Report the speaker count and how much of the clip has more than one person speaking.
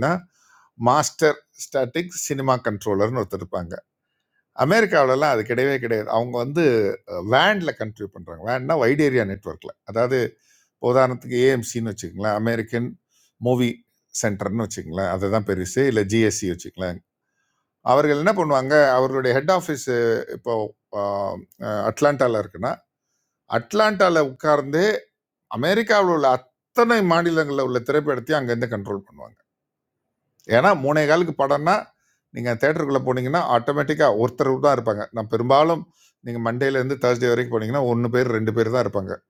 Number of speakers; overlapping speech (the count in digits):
1, no overlap